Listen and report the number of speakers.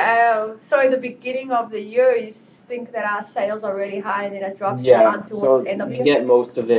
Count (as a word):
two